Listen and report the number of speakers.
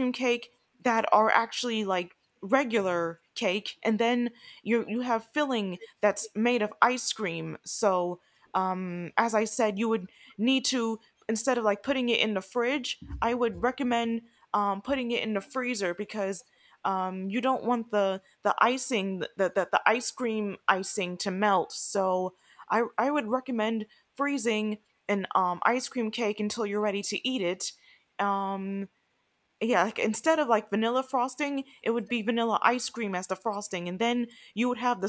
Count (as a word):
one